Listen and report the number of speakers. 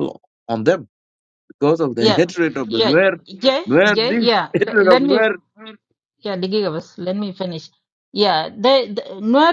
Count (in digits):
2